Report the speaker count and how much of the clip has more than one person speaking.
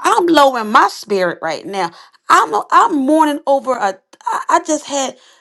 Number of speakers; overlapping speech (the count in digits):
1, no overlap